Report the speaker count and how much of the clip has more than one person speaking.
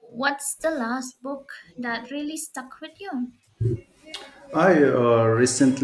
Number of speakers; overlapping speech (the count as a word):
two, no overlap